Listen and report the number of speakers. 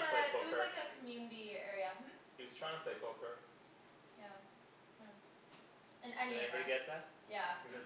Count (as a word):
two